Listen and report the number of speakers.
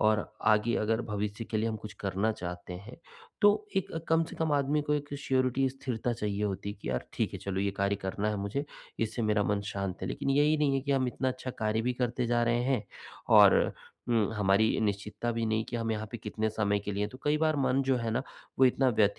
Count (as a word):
one